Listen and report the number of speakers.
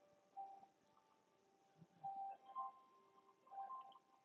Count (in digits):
0